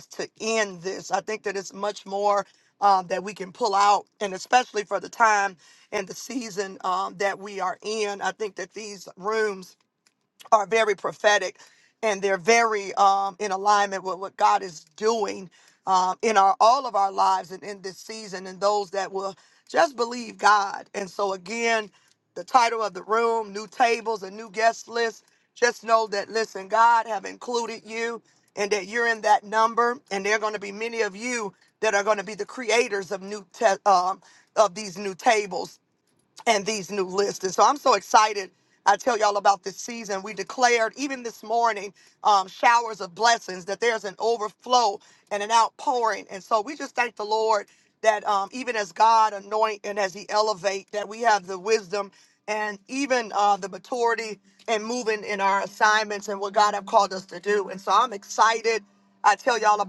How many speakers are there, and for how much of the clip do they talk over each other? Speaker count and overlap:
1, no overlap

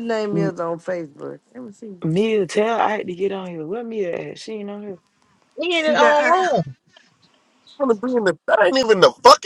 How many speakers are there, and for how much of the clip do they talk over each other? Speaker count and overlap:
4, about 7%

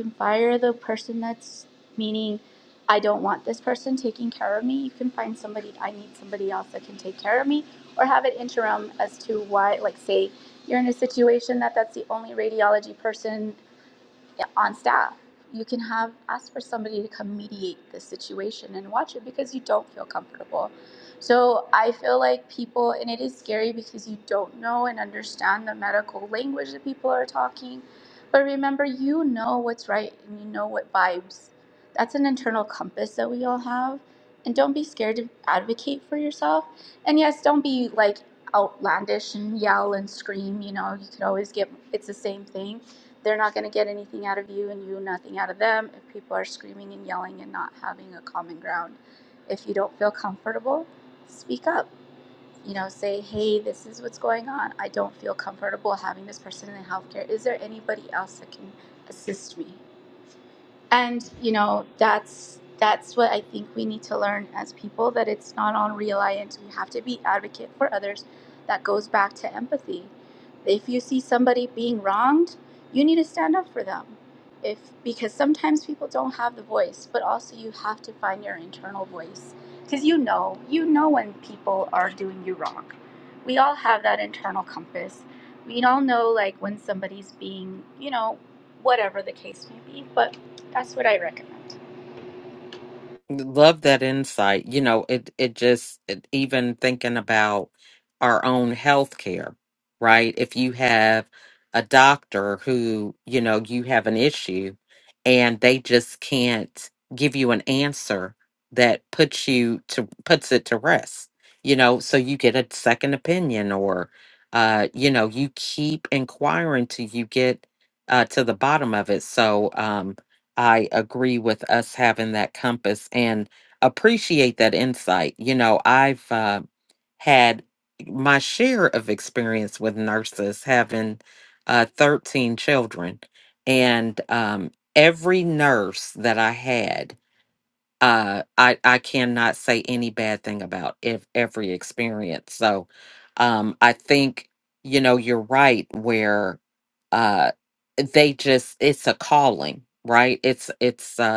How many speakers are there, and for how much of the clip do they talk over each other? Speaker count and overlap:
2, no overlap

